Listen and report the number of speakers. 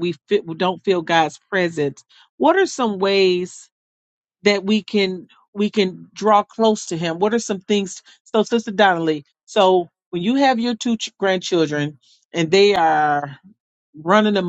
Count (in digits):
1